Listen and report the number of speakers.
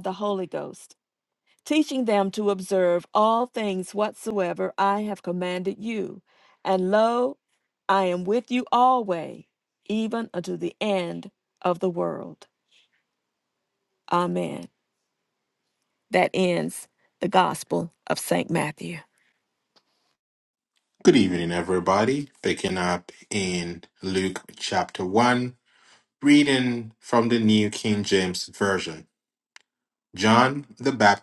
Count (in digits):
2